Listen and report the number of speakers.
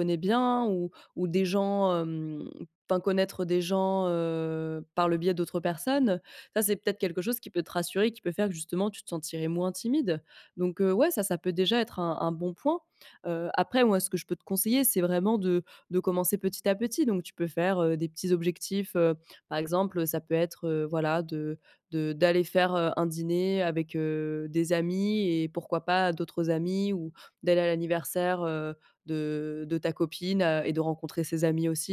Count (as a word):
one